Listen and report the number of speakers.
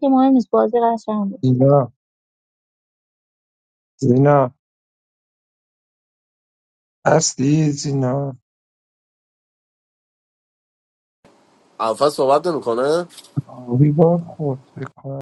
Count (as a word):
three